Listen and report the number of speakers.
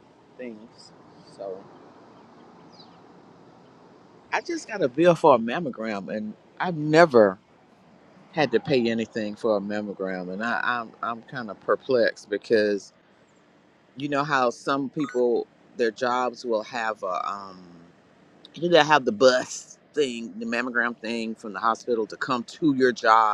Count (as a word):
one